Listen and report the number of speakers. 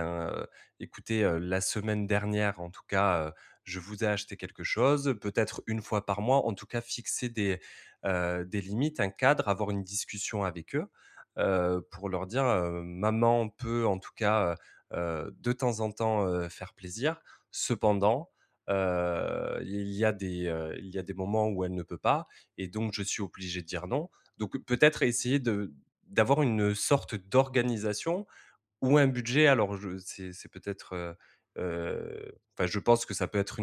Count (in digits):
1